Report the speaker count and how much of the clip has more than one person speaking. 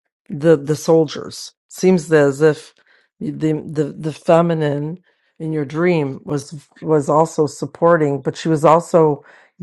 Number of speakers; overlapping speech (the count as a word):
one, no overlap